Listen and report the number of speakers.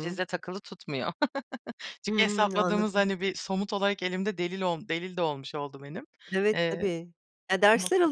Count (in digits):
2